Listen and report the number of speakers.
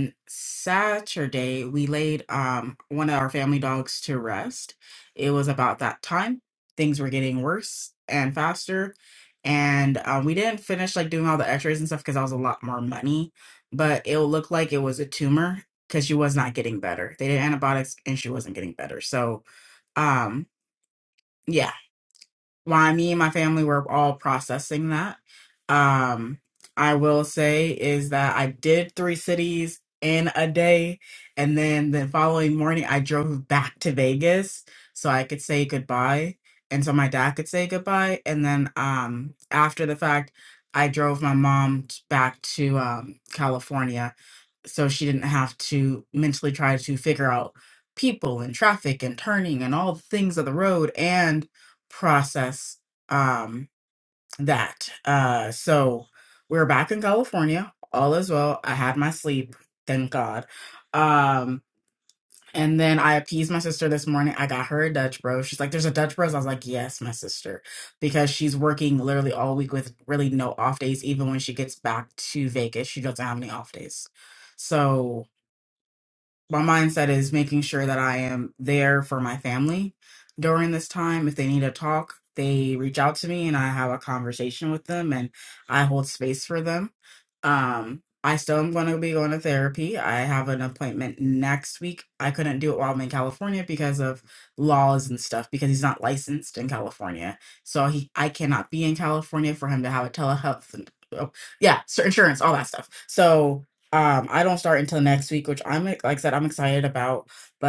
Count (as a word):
one